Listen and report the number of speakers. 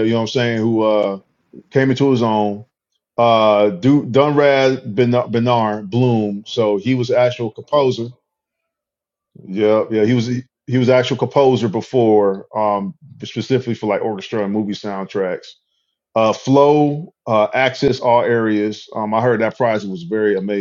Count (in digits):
1